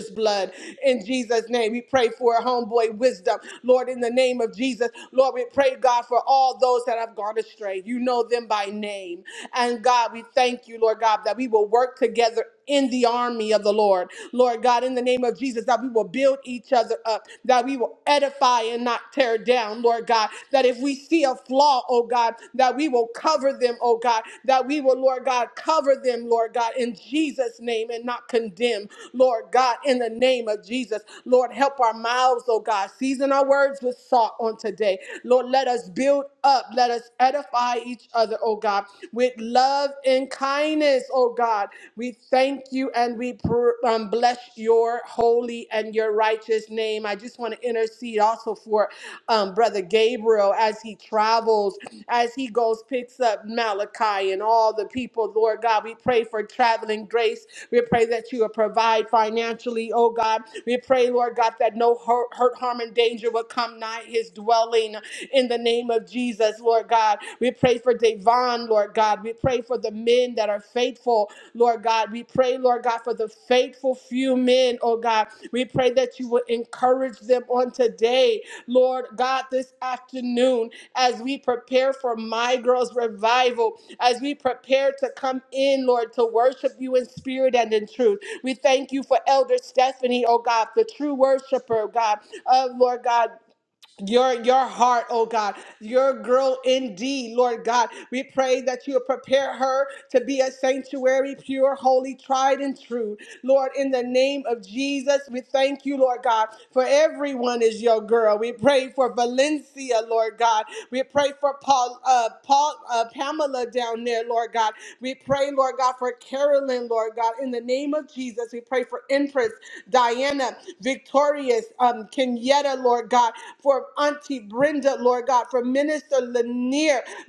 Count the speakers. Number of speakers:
one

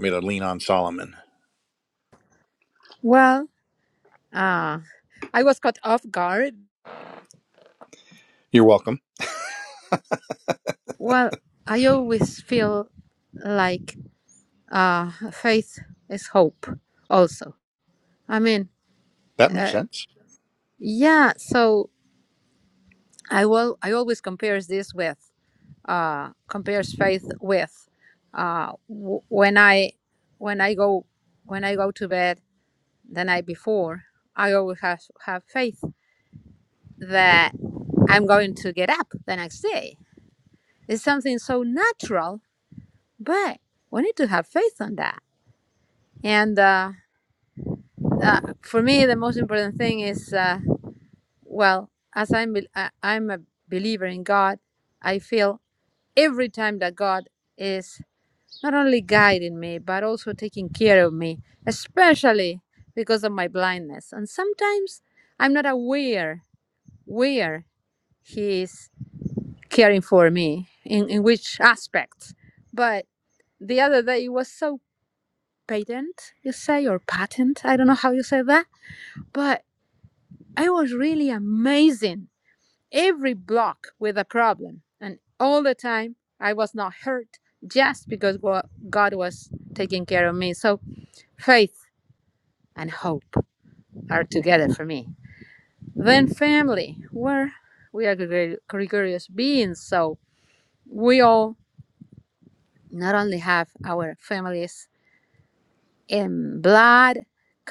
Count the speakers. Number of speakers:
two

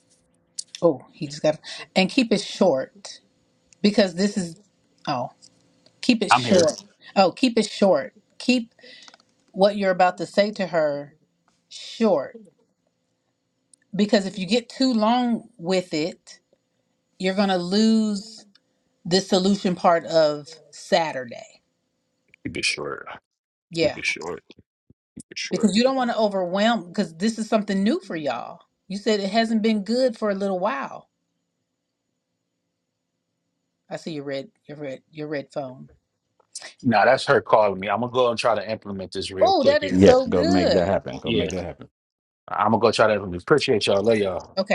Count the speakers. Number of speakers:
three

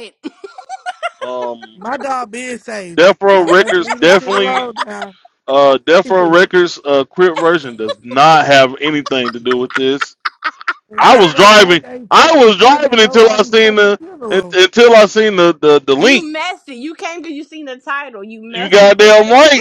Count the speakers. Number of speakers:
three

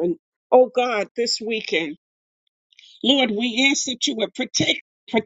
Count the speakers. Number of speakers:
one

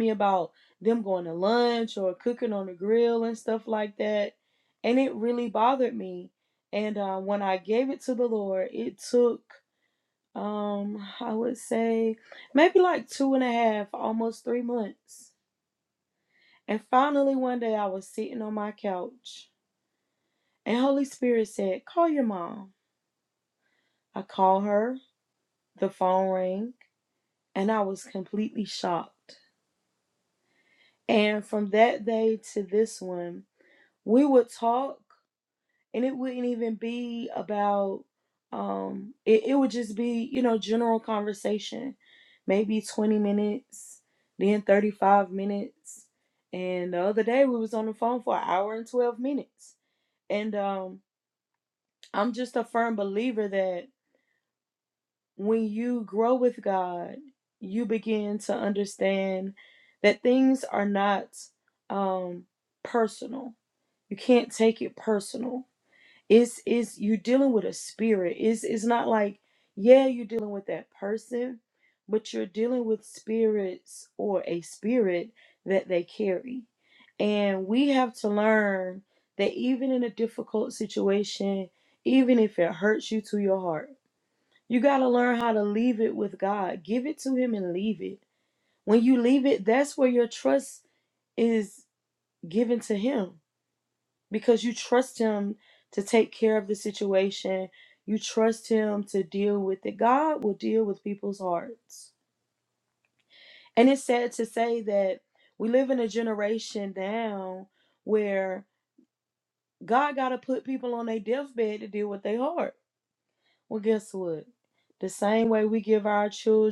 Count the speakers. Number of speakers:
one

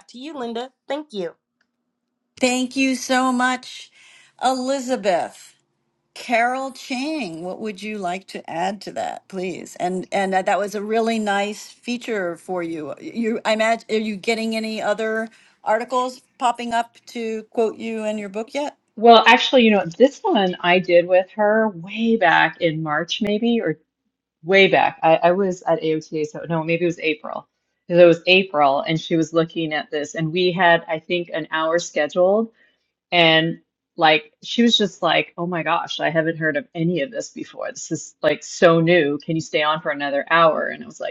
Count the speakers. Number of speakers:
three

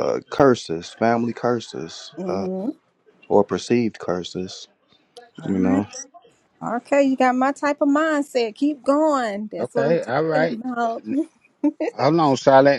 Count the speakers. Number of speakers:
three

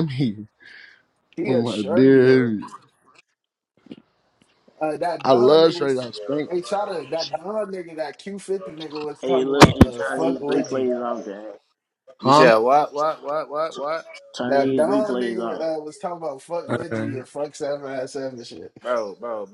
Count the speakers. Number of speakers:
four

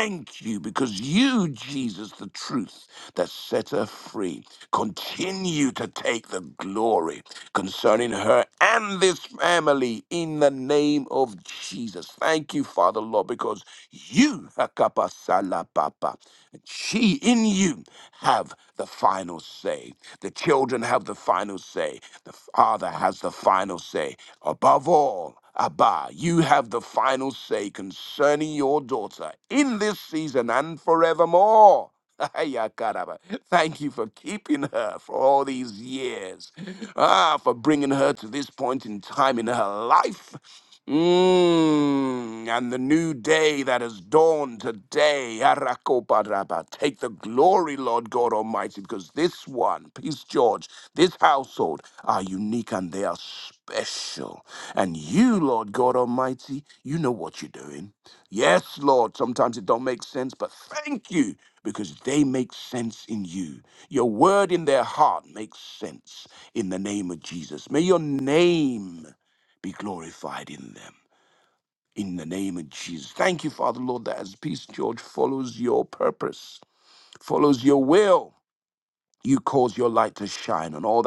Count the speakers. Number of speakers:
one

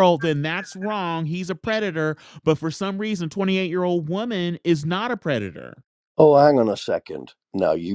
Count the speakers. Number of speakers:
two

